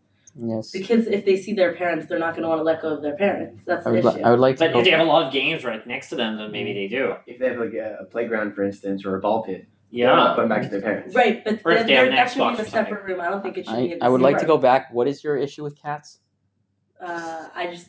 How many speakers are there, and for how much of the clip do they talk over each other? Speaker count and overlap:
four, about 23%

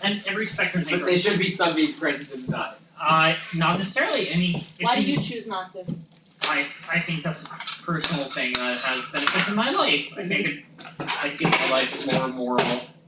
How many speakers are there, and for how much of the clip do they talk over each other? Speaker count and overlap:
three, about 6%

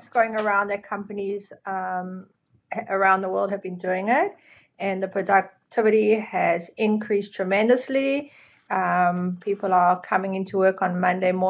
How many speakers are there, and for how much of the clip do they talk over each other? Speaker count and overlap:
one, no overlap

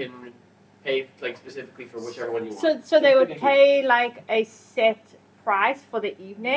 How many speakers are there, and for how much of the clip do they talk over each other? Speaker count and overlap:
two, about 14%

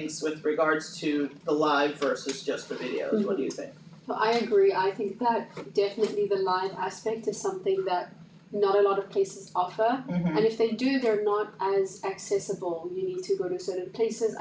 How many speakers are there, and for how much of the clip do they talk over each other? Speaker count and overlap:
two, about 3%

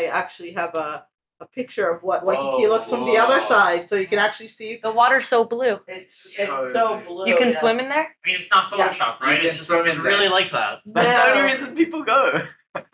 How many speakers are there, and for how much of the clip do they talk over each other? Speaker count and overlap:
four, about 43%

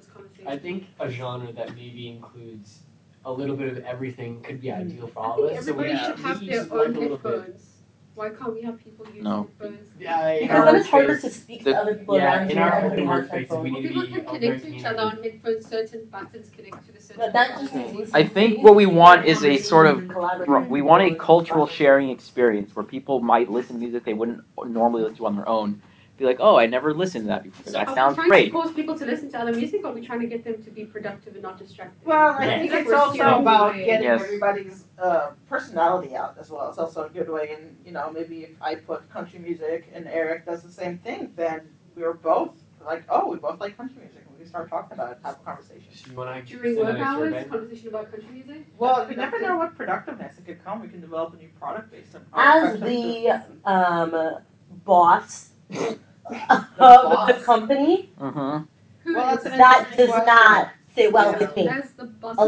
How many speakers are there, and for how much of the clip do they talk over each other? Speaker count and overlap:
five, about 33%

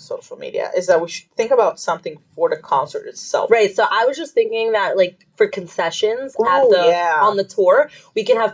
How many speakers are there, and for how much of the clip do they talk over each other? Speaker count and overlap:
two, about 11%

